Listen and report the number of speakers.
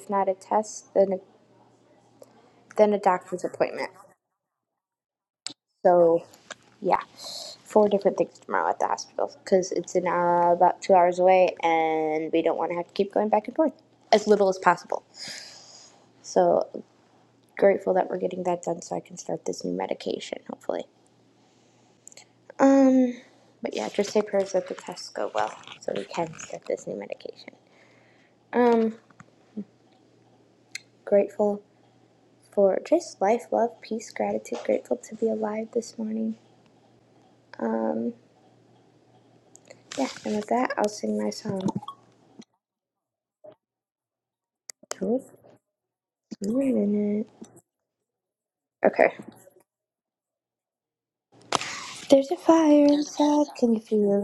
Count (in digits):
1